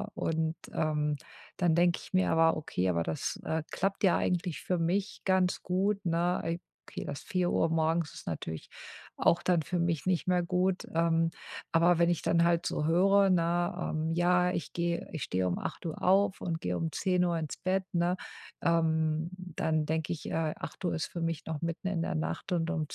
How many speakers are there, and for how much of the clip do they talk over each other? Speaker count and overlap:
one, no overlap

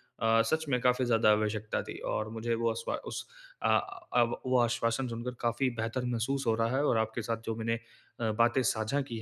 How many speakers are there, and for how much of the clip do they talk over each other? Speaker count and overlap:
one, no overlap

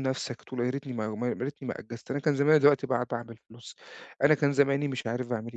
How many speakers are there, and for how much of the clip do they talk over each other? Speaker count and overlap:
one, no overlap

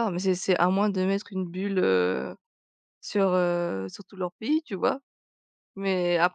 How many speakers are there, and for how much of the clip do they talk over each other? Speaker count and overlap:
one, no overlap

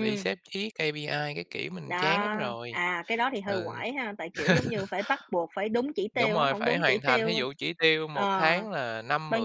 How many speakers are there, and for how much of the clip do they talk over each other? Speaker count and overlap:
two, about 29%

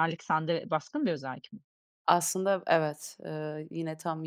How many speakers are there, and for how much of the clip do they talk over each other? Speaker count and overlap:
two, no overlap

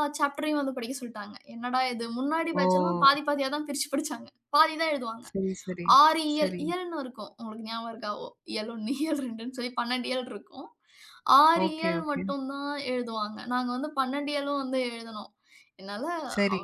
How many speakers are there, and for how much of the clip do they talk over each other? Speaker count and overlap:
two, about 8%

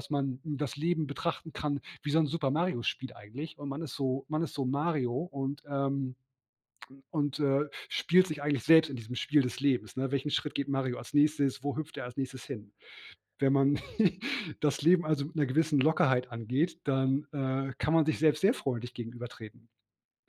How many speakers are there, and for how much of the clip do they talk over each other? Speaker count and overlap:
one, no overlap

